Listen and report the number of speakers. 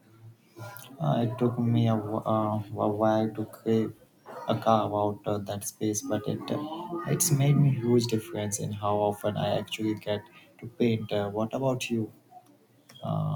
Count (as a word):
one